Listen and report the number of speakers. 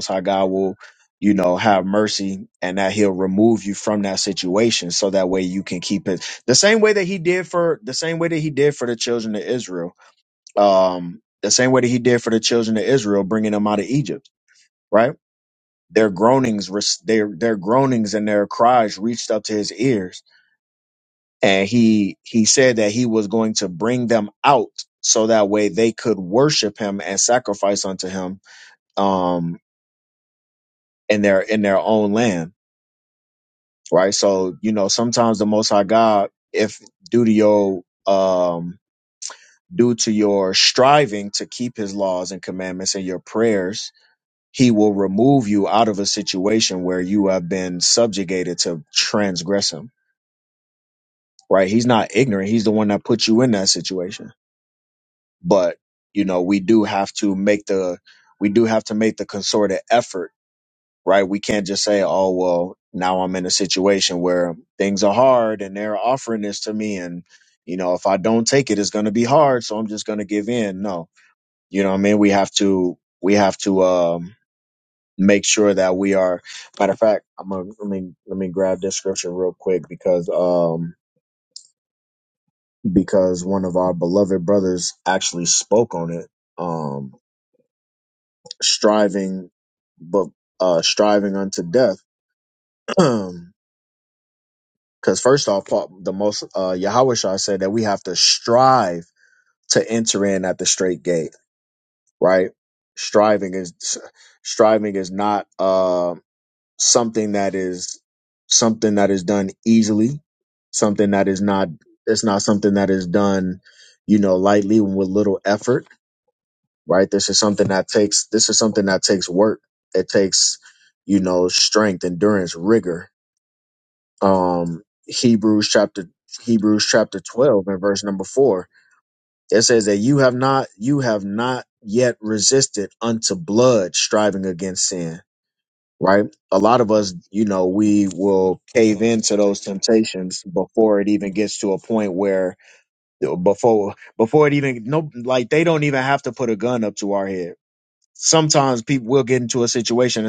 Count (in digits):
1